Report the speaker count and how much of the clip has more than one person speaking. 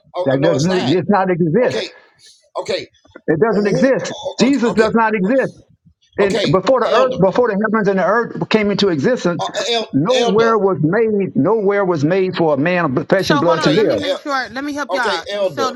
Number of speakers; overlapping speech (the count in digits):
3, about 39%